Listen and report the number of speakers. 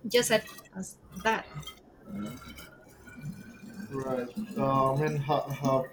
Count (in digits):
2